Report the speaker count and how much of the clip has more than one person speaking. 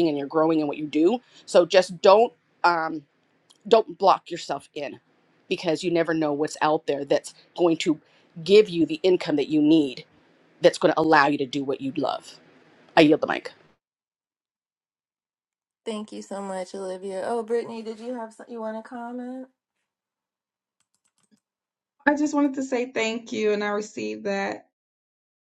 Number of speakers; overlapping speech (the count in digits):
3, no overlap